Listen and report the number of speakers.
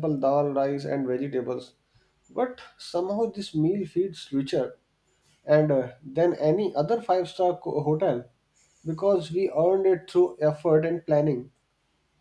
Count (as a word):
one